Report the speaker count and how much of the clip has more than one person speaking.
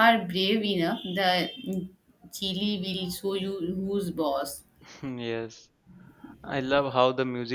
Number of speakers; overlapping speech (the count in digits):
2, no overlap